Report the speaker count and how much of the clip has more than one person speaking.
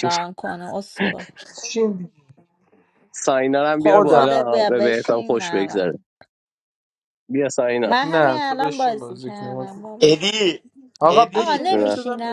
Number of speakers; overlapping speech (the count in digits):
4, about 43%